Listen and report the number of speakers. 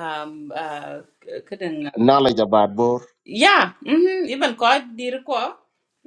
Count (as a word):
two